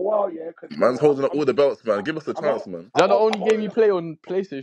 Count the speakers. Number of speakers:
3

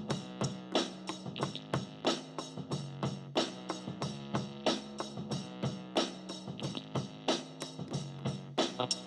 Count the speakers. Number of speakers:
0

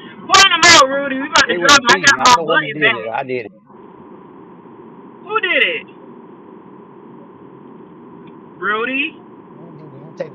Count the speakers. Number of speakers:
2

